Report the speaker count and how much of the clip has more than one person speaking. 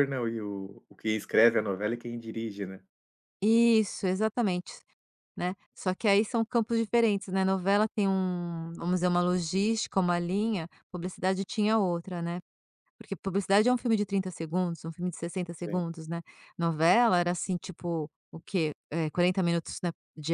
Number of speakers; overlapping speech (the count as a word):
two, about 1%